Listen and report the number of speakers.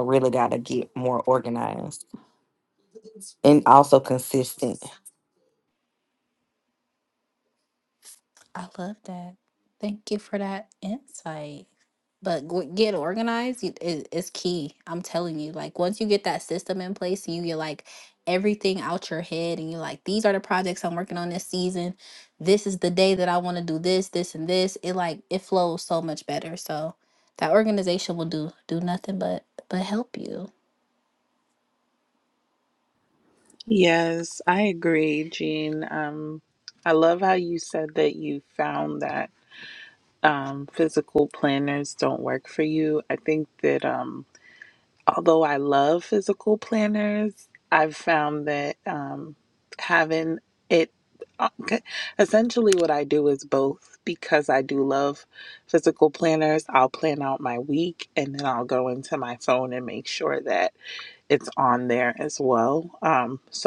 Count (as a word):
three